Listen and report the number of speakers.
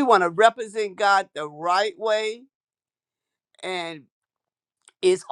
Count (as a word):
one